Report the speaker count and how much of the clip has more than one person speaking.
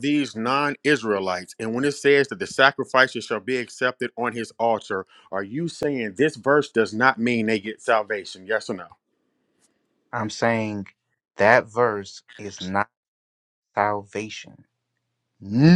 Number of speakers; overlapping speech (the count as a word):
two, no overlap